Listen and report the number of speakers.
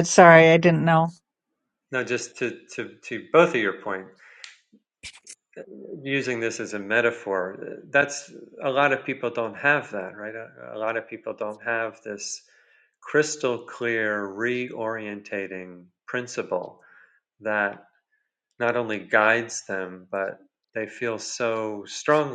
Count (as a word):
two